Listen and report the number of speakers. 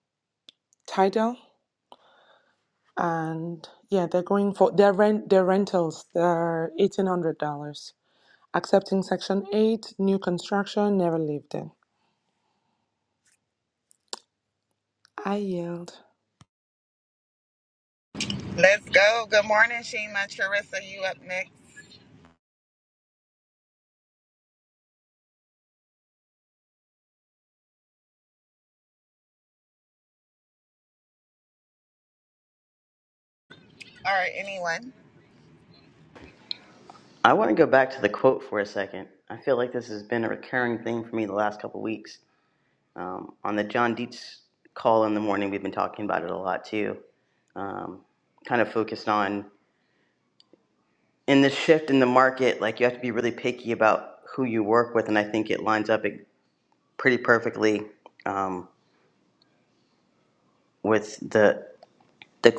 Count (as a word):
three